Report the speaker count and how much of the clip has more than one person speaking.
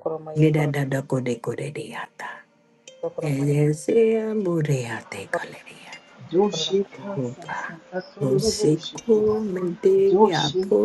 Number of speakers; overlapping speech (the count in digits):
3, about 23%